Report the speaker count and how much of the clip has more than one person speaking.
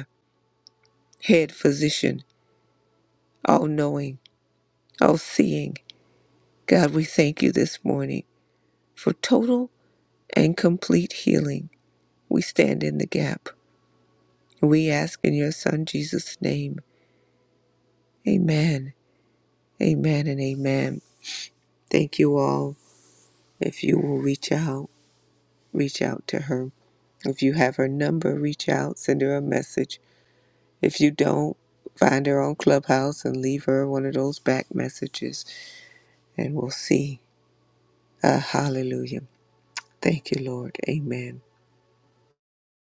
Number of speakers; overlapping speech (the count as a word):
one, no overlap